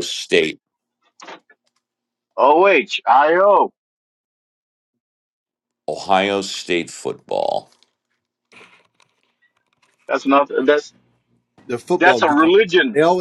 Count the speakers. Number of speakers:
three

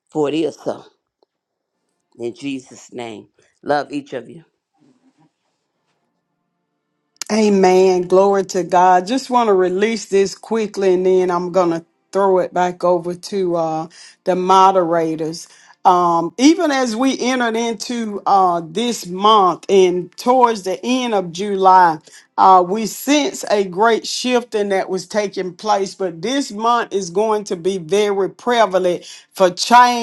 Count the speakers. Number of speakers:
two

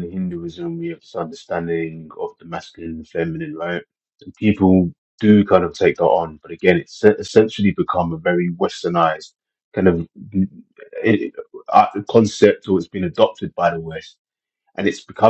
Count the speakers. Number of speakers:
one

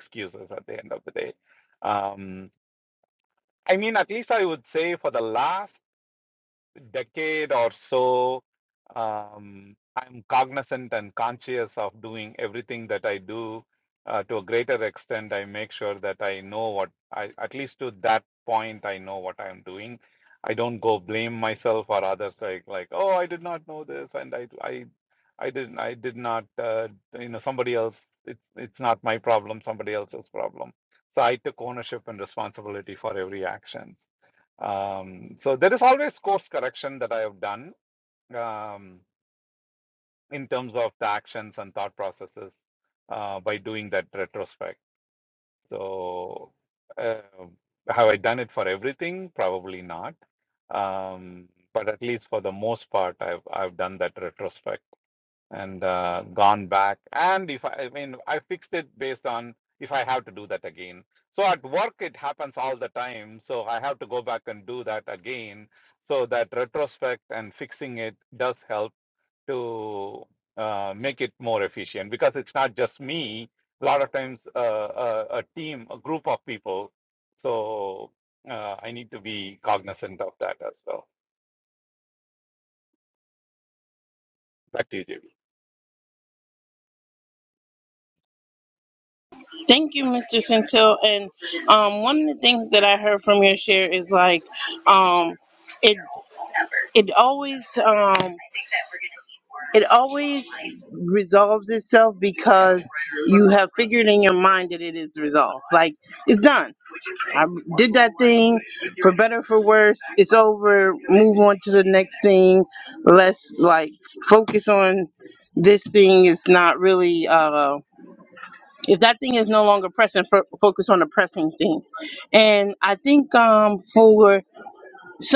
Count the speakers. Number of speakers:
two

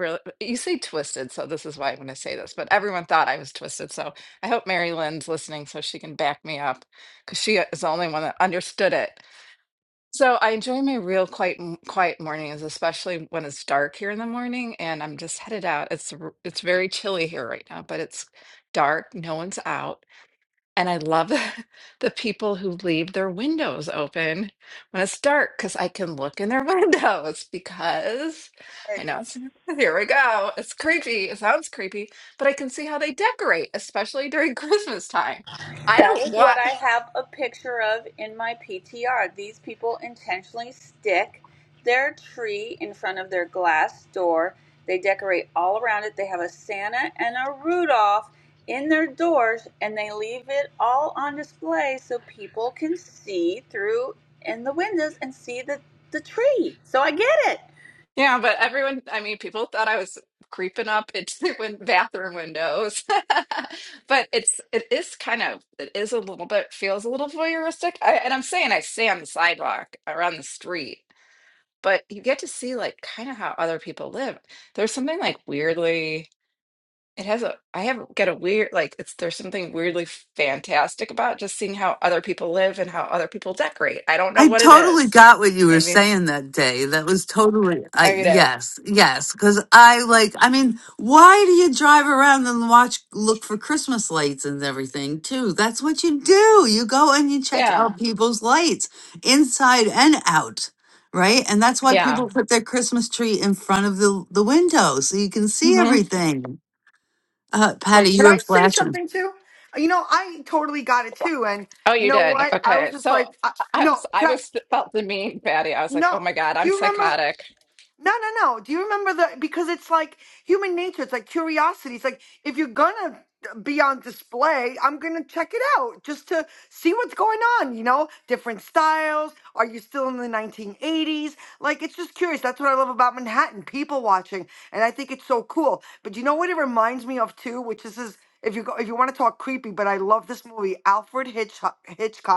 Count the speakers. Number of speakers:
four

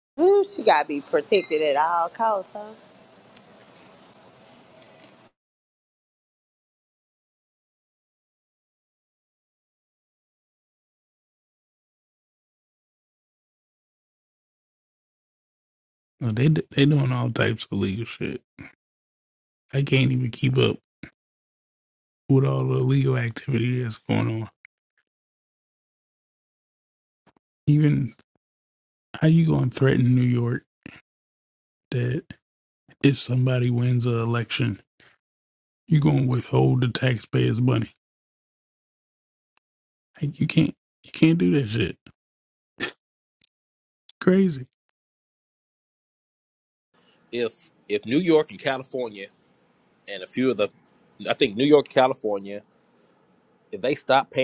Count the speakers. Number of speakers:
three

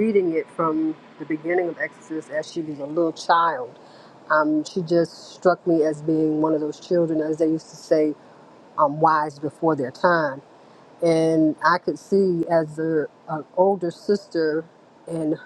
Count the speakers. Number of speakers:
one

